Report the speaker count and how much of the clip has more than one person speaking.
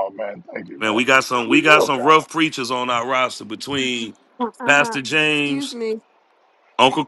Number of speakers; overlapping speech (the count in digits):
3, about 23%